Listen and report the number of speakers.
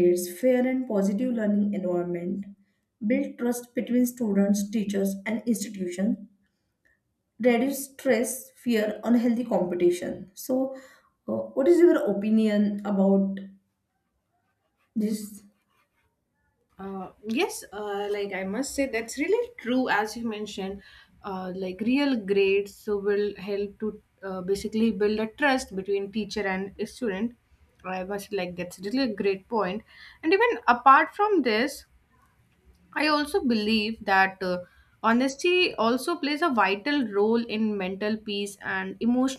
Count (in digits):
2